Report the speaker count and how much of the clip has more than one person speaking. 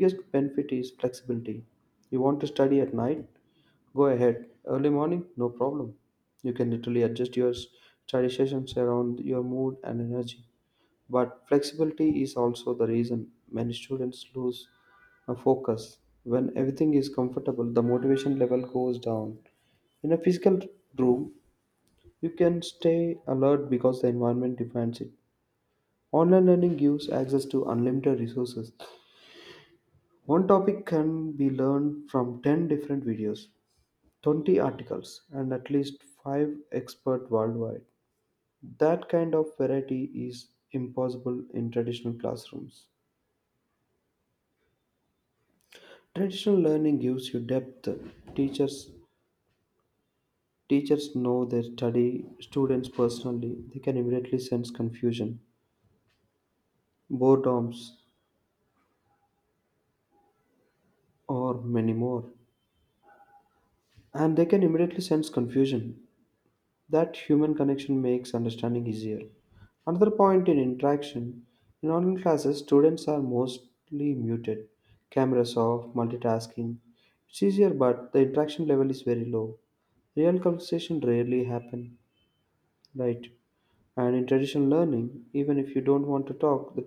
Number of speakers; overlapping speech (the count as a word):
one, no overlap